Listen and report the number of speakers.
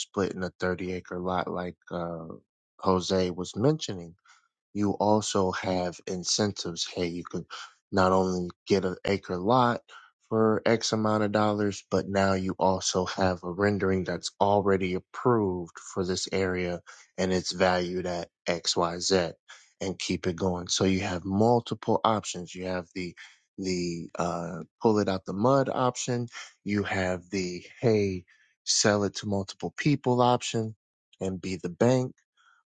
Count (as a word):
one